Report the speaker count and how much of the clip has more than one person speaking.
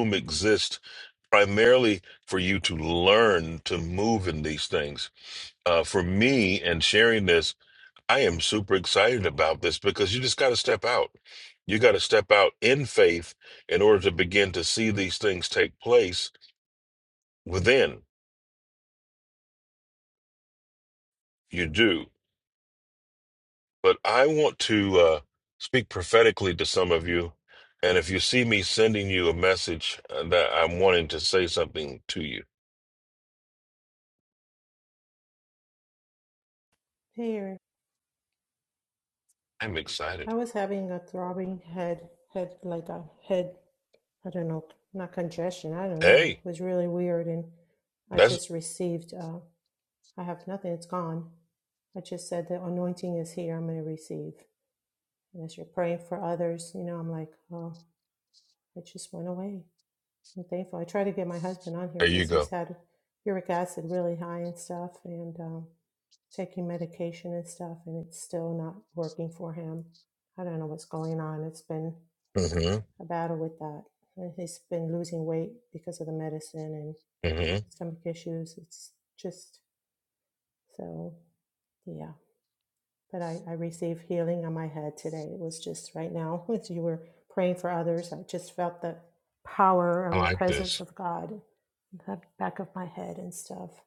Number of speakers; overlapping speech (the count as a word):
two, about 2%